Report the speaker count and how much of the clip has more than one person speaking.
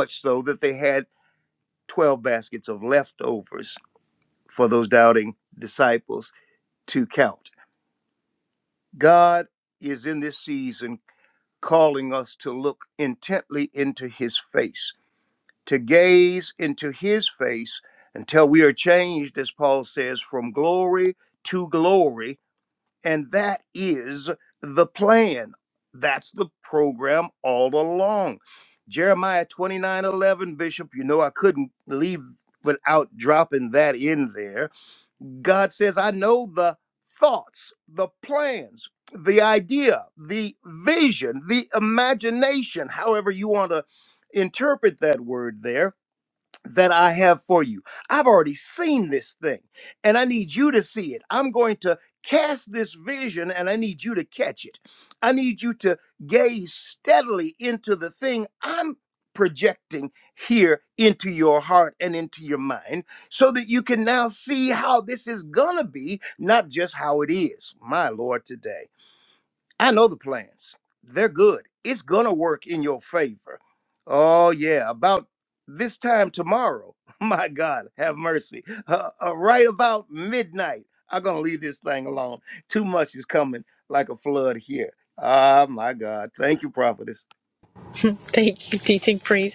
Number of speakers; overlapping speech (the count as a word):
two, no overlap